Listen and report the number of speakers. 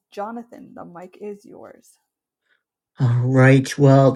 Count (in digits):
2